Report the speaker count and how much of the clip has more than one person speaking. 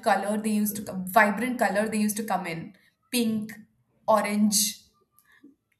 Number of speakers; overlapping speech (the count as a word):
one, no overlap